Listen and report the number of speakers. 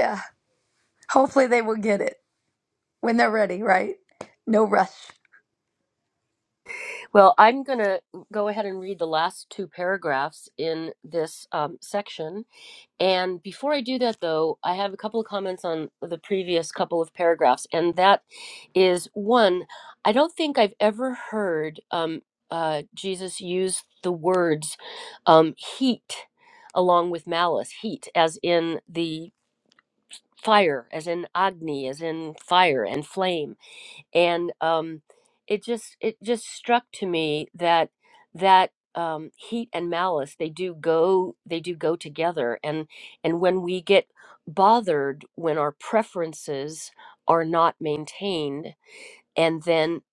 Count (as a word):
two